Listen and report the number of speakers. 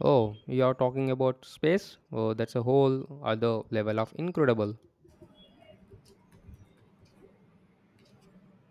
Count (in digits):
1